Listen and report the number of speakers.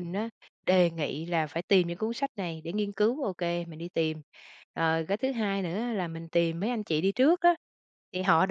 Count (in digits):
1